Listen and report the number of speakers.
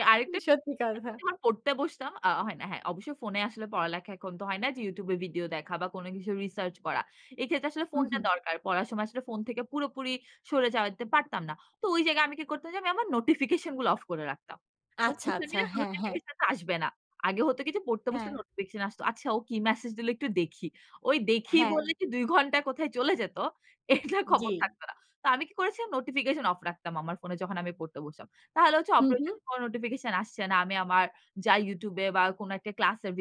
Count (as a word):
two